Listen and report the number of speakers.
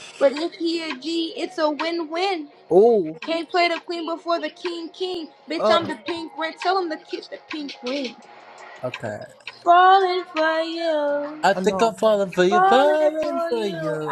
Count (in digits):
3